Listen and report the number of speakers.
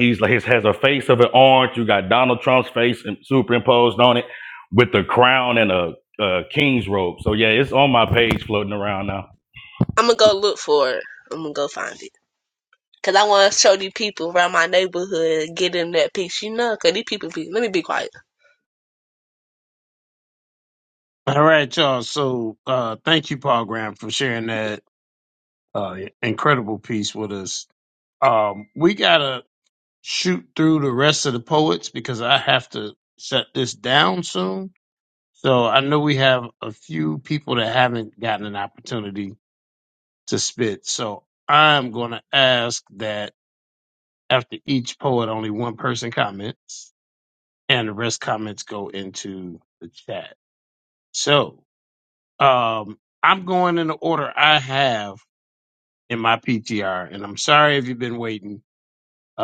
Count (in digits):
3